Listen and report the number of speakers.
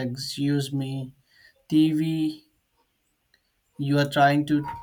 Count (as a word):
one